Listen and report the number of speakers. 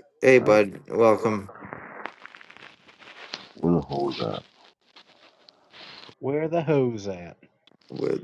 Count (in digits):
3